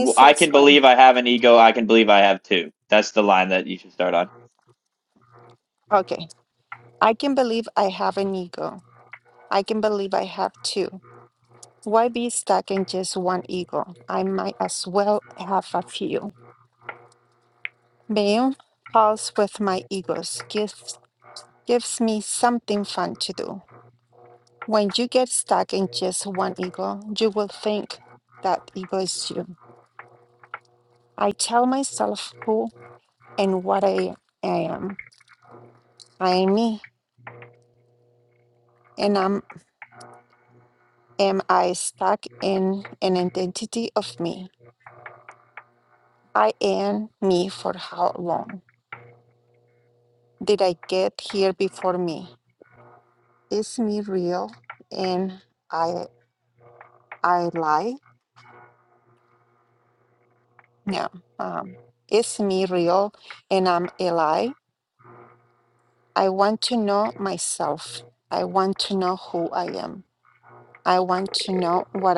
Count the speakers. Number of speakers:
two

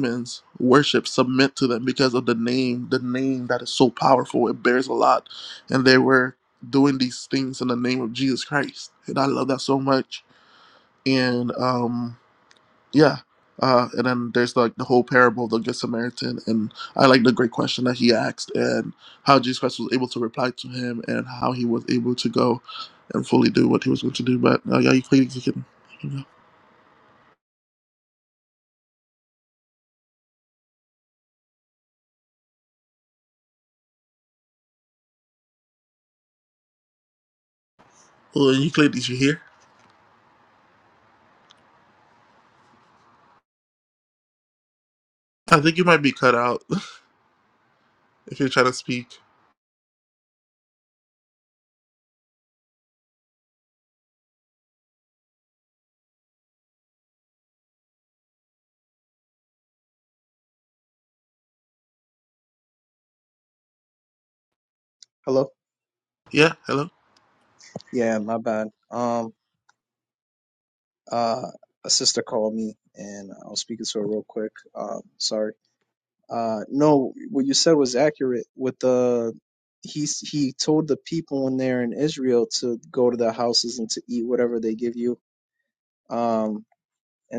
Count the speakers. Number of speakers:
two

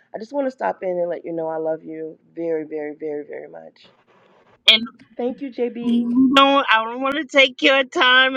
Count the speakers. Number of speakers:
two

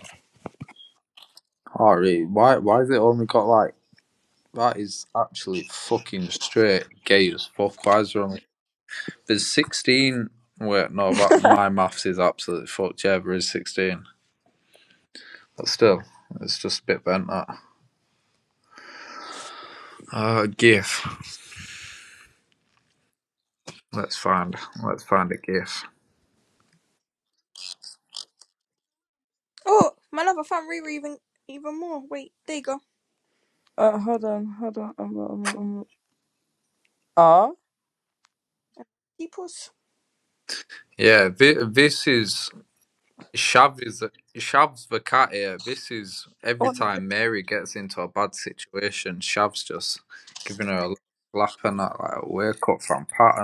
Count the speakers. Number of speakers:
three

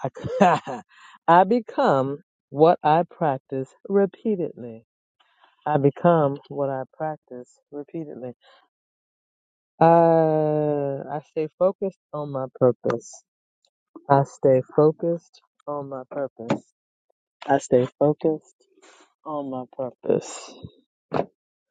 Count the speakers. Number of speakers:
one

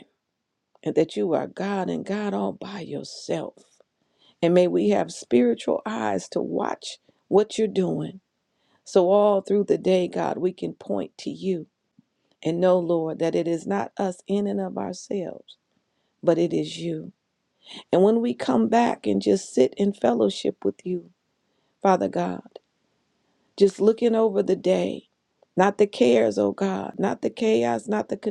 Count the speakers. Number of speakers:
one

